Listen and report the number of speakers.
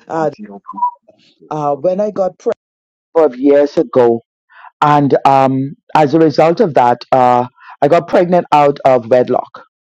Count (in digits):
2